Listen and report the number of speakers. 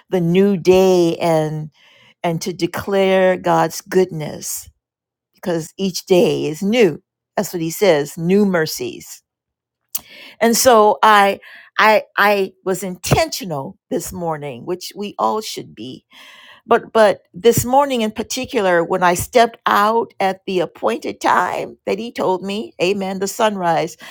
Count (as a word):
one